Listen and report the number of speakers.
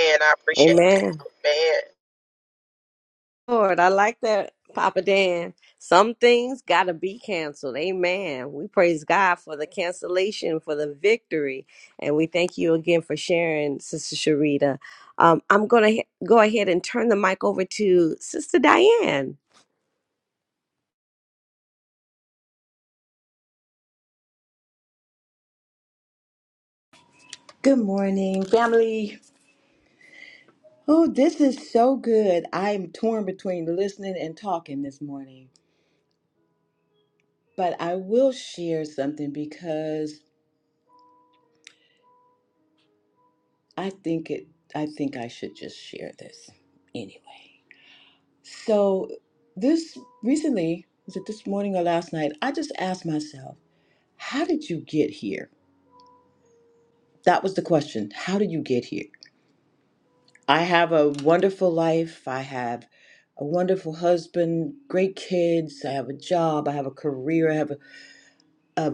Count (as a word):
three